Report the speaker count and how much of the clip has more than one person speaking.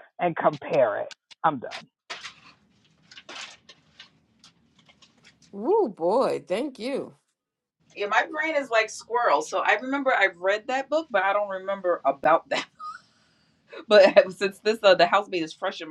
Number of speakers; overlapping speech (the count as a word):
three, no overlap